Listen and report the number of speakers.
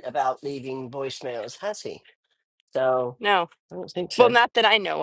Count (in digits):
2